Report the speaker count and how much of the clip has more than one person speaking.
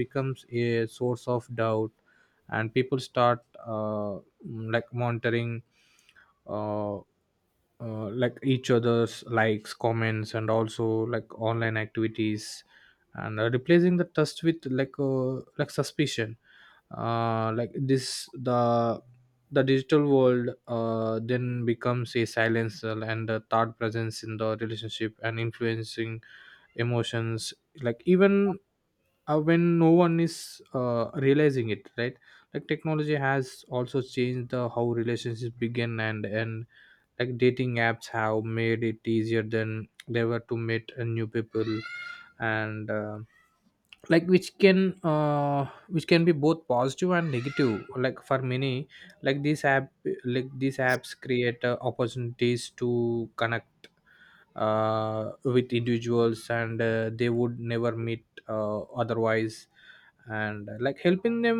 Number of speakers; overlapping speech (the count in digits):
1, no overlap